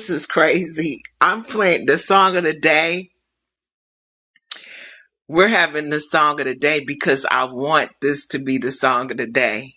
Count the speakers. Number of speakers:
1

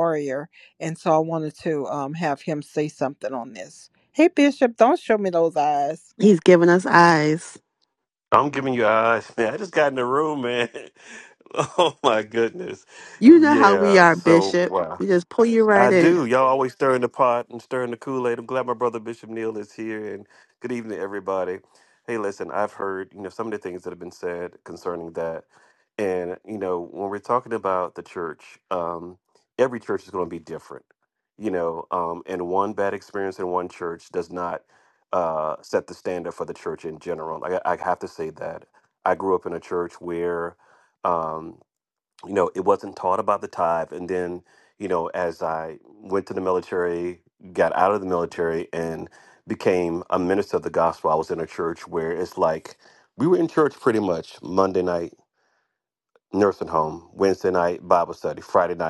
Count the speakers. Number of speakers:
3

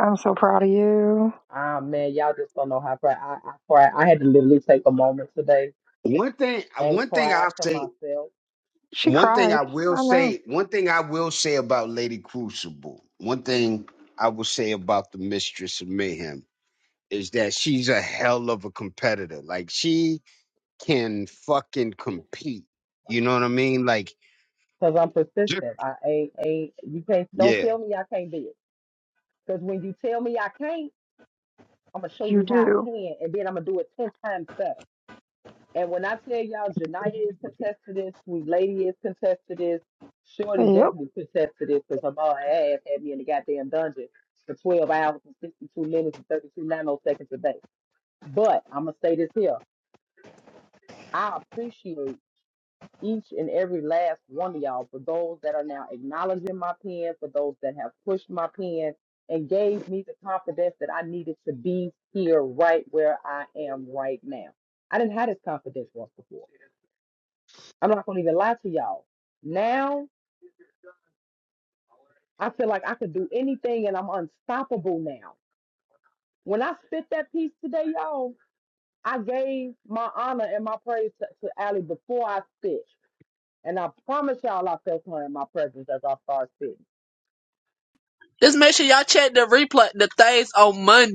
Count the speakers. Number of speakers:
4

